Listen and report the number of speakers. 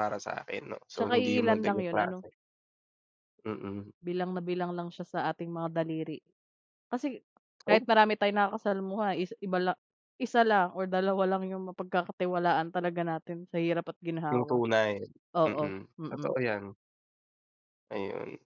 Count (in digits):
2